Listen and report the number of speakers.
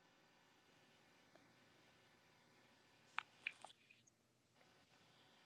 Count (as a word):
zero